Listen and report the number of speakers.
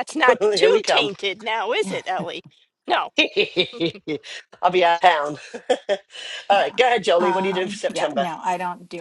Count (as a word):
three